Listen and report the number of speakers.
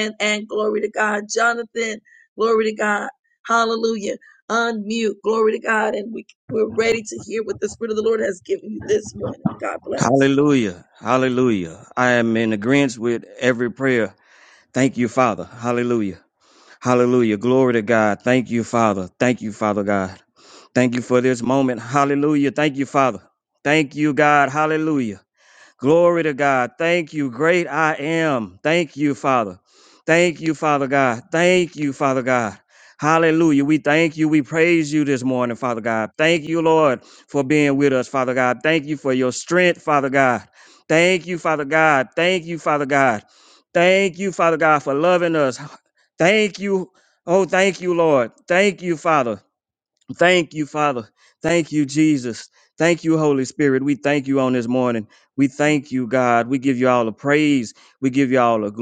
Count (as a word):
two